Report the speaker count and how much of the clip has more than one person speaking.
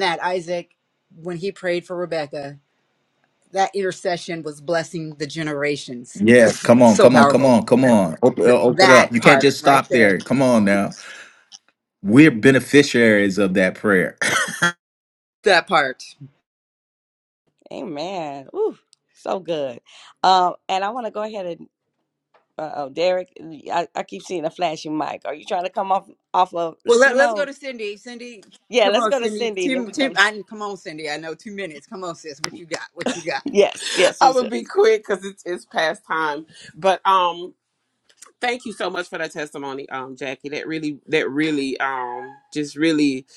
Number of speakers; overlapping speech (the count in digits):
4, about 10%